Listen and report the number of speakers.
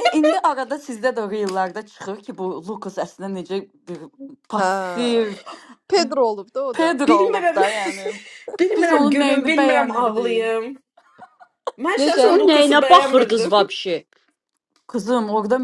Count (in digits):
4